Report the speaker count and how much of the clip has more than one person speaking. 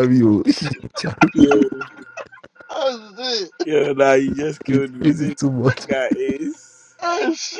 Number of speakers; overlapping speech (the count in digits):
3, about 9%